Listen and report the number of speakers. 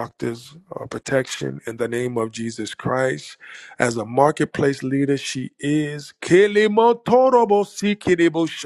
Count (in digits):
1